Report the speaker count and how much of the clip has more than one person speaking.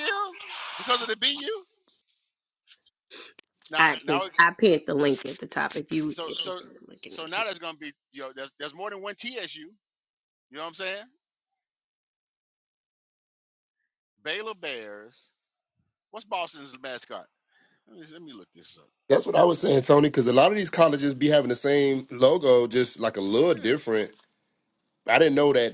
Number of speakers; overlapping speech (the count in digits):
3, about 6%